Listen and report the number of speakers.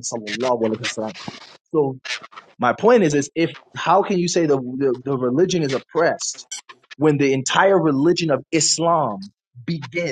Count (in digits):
1